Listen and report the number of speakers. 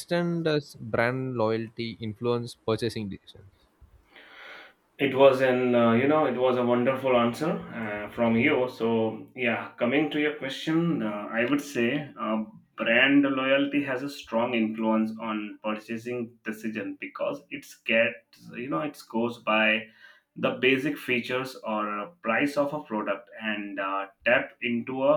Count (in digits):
2